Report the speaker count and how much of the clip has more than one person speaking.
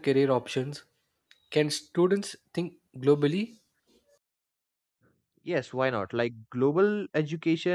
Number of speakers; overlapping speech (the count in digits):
2, no overlap